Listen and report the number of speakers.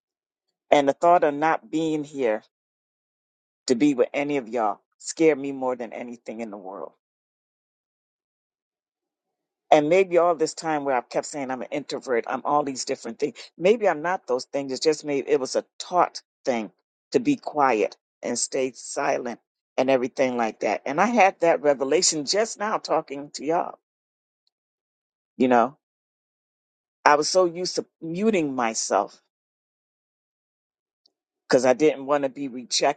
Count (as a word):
one